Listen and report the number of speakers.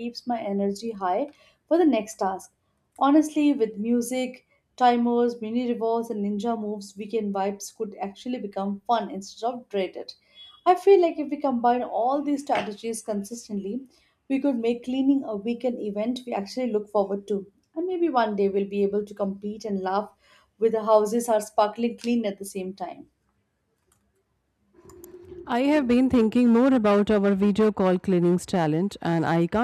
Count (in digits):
2